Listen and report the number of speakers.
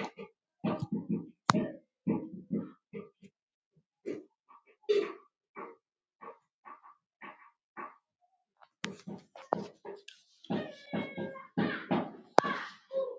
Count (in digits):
0